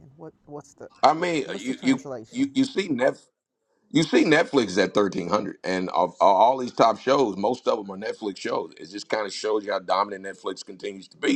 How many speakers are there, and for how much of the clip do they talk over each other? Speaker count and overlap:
two, about 6%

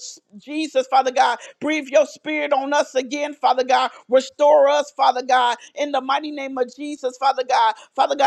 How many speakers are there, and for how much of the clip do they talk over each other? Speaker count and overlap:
one, no overlap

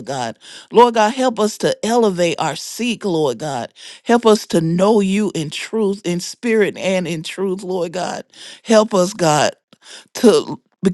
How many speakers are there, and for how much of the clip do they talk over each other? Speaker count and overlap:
one, no overlap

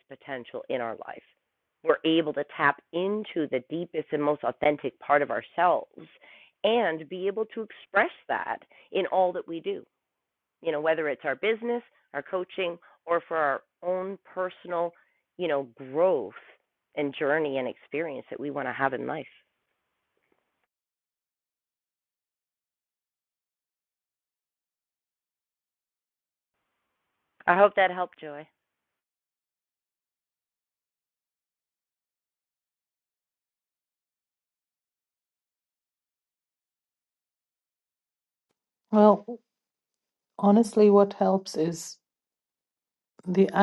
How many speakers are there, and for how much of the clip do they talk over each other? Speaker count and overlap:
two, no overlap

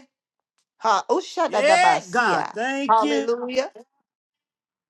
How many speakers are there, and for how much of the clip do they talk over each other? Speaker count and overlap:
two, about 19%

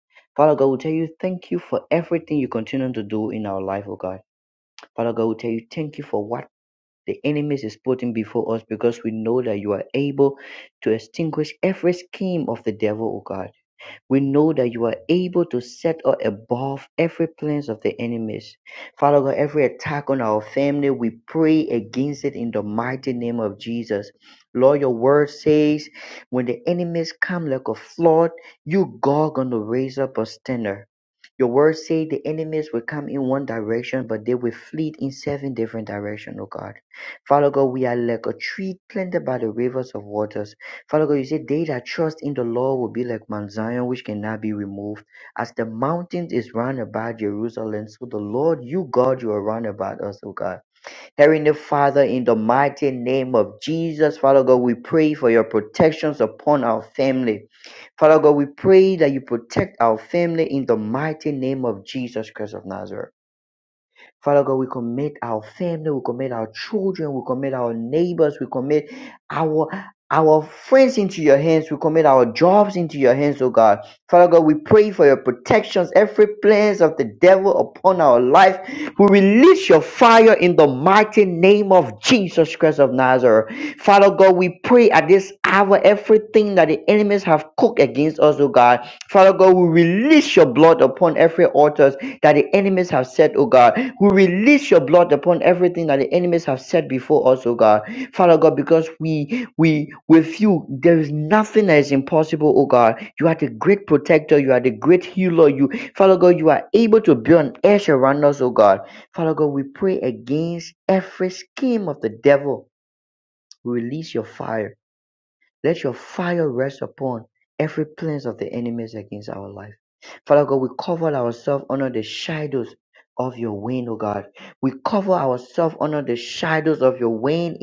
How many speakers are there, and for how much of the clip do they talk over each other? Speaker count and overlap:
one, no overlap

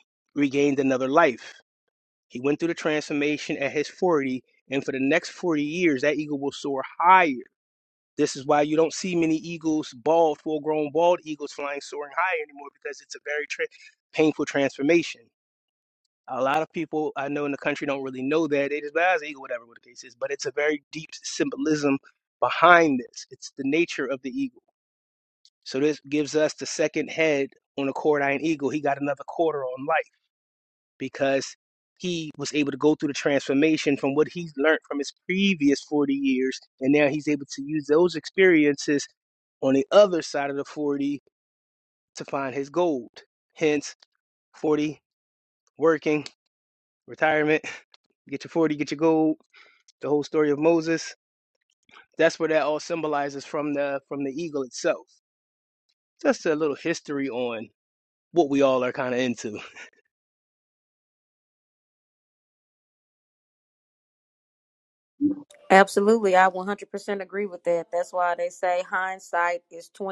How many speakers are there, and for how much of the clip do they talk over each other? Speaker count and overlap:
two, no overlap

